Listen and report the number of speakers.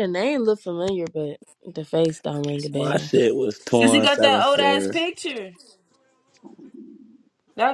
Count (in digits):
3